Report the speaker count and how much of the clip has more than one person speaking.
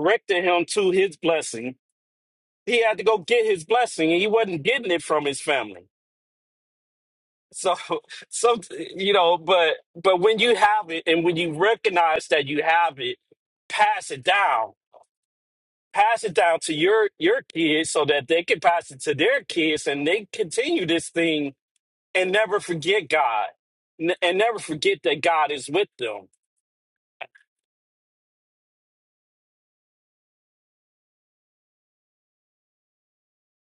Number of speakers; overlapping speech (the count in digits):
1, no overlap